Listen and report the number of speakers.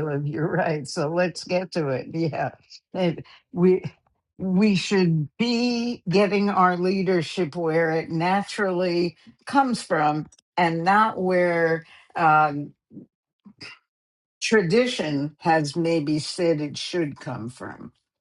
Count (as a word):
one